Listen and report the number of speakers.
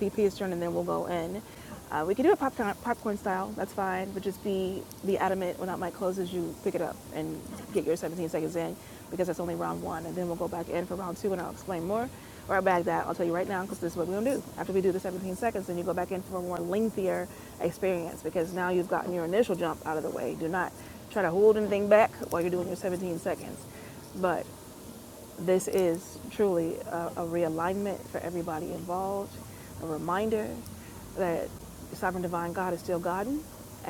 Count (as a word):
one